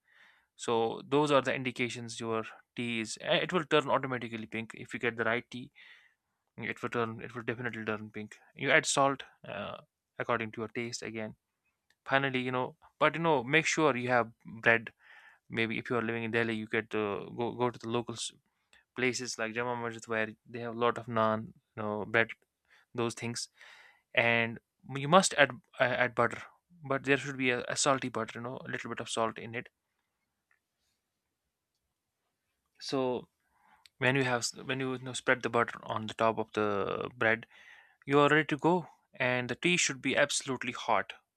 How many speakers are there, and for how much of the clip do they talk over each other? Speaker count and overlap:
1, no overlap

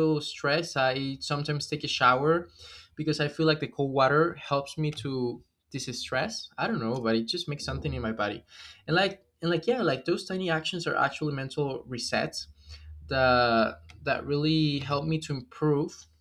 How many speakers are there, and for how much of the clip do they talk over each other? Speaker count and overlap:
1, no overlap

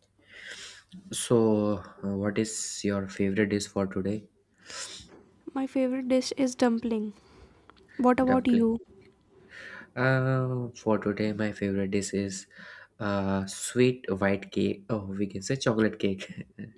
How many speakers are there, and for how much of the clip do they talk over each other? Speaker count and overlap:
2, about 3%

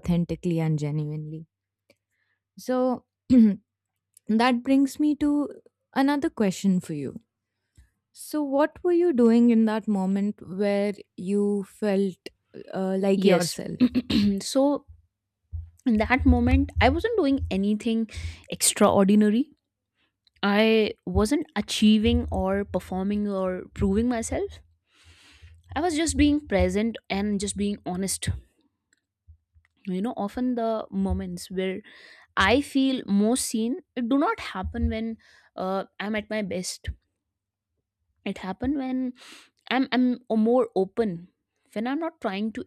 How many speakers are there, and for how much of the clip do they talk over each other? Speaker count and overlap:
2, about 1%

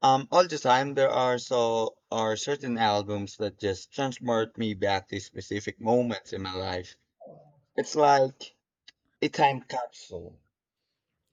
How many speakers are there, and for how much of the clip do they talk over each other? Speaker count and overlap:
1, no overlap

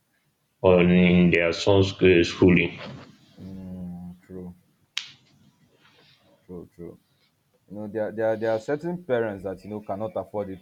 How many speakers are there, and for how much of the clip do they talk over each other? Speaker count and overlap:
2, no overlap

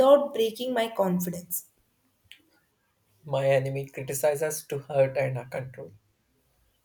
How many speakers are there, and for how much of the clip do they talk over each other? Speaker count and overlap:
2, no overlap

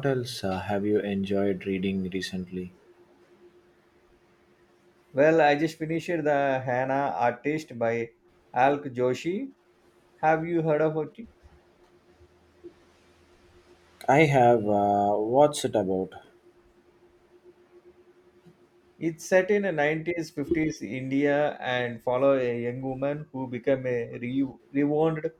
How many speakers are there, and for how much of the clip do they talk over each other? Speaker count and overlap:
2, no overlap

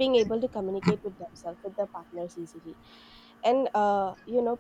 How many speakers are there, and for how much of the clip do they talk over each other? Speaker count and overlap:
1, no overlap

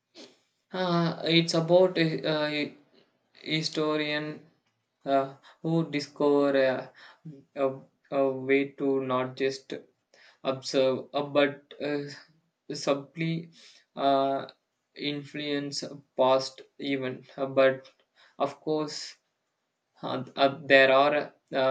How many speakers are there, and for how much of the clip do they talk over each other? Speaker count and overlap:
1, no overlap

